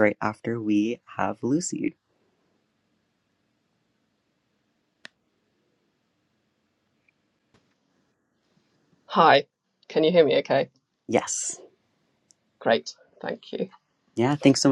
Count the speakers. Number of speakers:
two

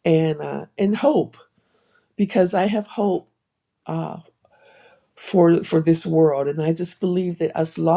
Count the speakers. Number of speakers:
one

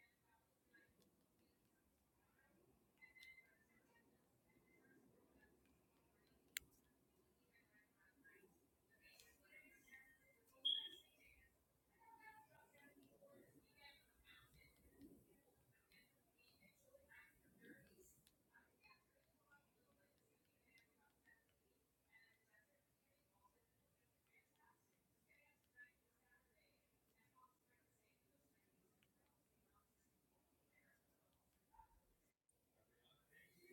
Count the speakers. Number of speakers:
zero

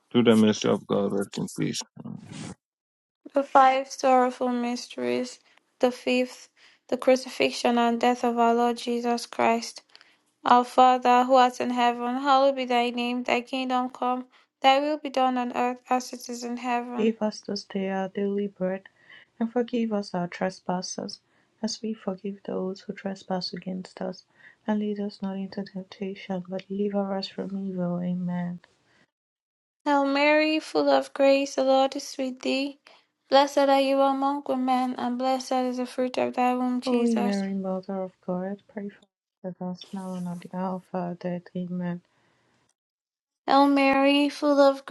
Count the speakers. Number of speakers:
three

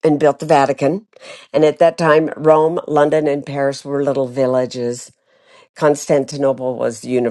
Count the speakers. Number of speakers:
one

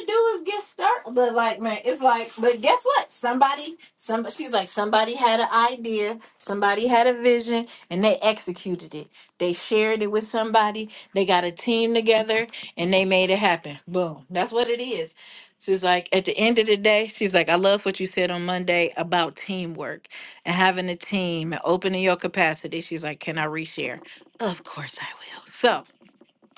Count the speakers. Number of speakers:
one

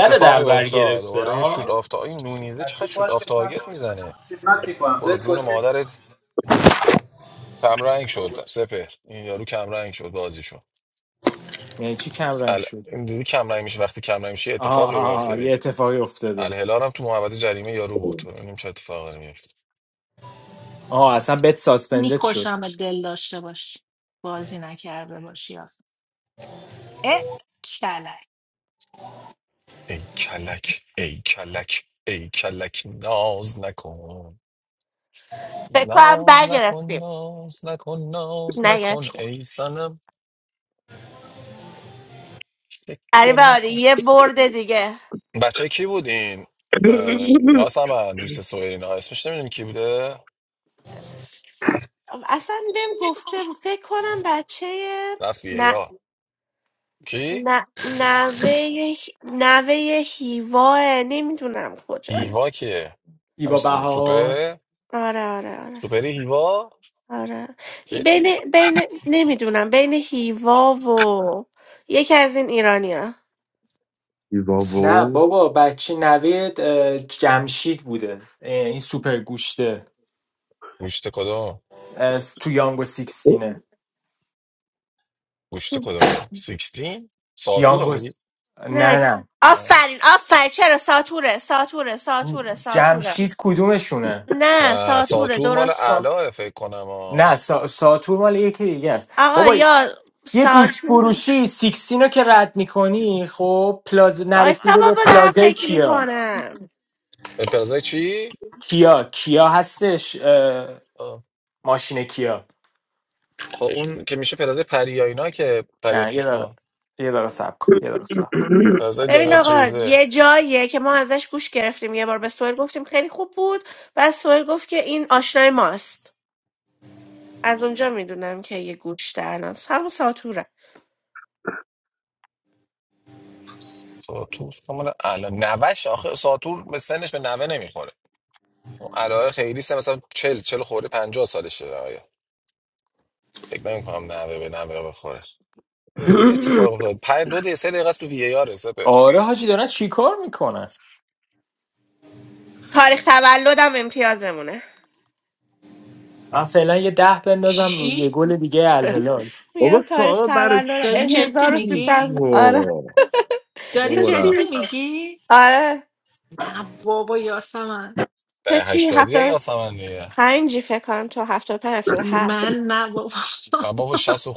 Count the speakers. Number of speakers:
six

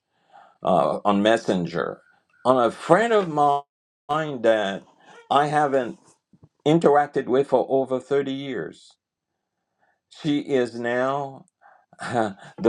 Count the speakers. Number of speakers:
one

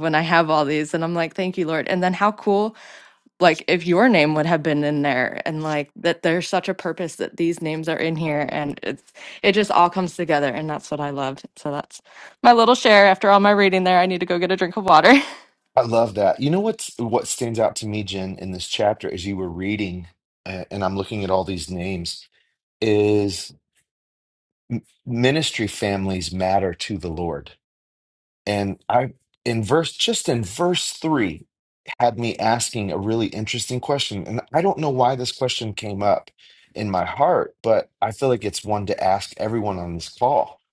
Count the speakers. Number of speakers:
two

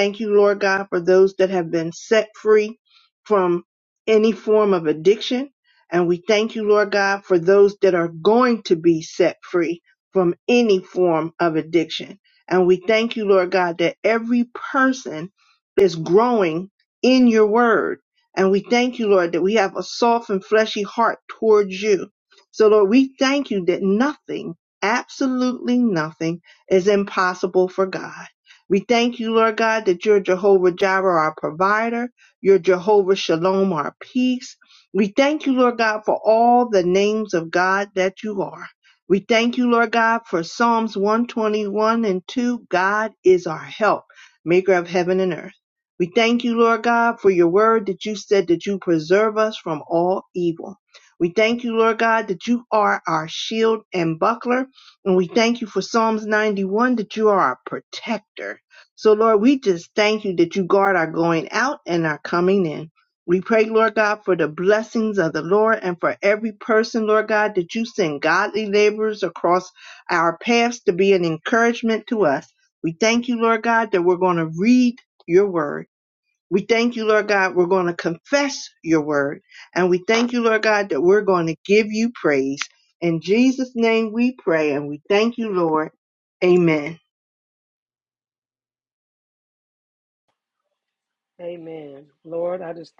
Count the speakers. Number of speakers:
two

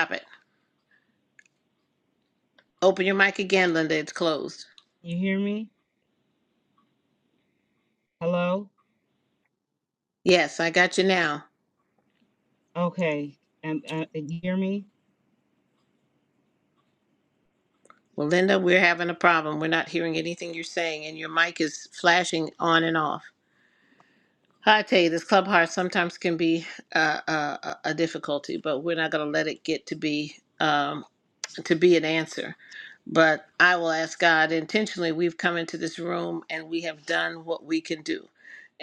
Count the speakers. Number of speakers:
two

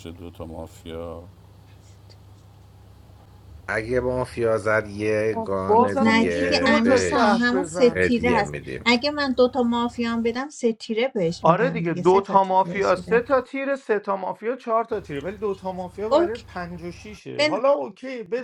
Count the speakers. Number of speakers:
four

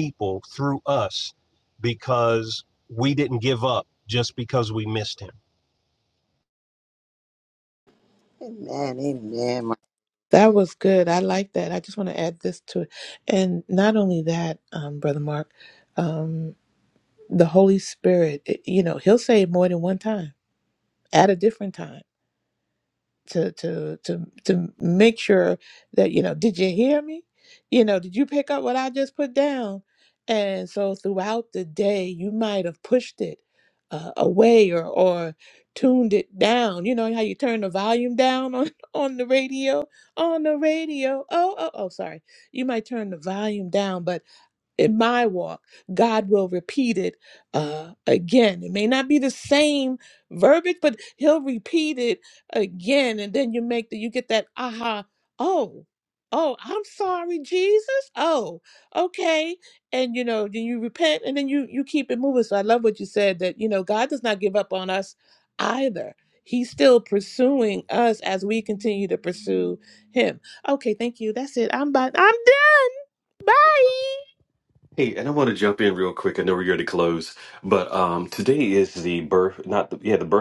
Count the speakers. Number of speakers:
four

